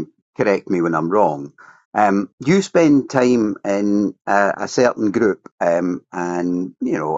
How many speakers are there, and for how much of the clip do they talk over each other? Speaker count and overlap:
1, no overlap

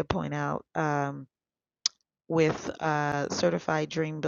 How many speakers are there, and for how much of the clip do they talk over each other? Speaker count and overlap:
1, no overlap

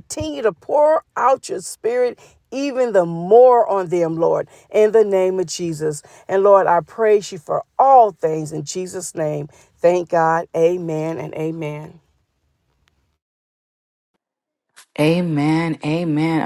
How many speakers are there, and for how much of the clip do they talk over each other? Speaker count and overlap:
2, no overlap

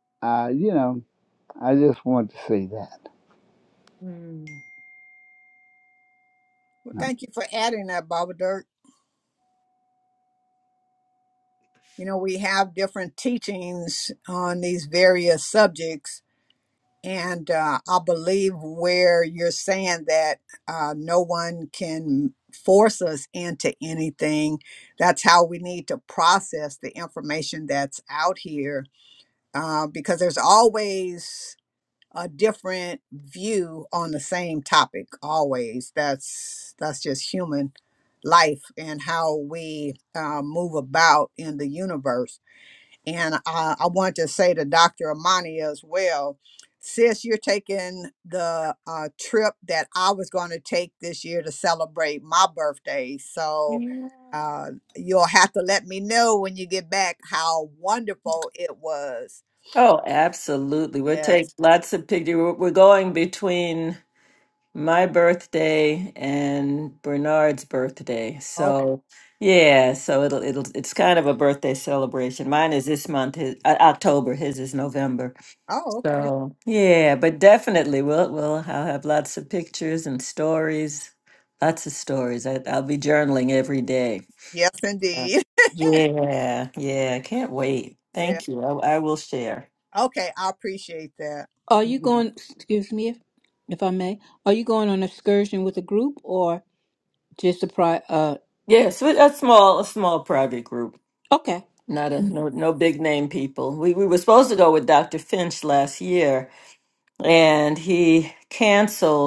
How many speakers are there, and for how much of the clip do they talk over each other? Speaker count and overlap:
4, about 2%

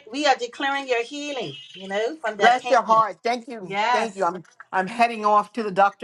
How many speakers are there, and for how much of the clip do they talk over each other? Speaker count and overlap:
2, about 17%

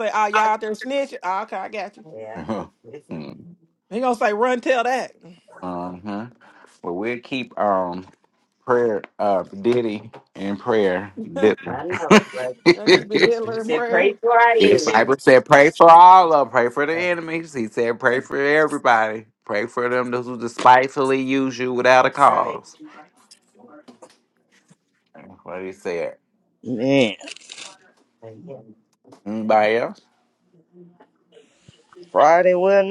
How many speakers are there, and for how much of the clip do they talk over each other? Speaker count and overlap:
4, about 5%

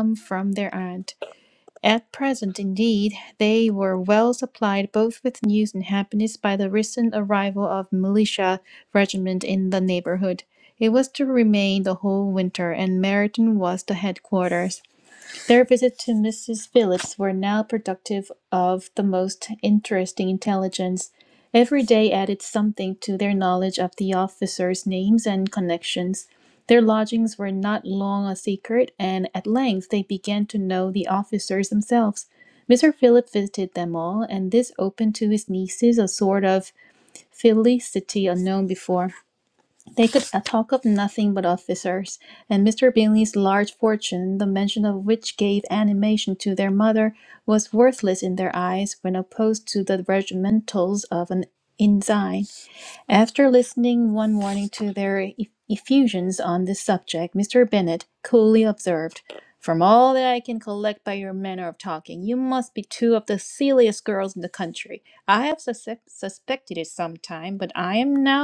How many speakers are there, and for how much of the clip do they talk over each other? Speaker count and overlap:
1, no overlap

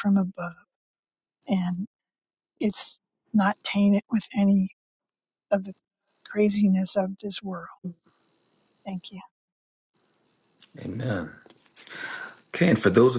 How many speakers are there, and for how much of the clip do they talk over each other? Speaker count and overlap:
2, no overlap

